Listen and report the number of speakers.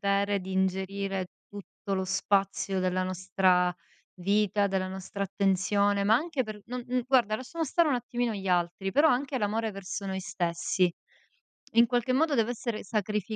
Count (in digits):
1